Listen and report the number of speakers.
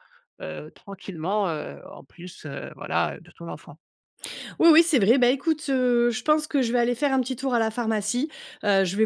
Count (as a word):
two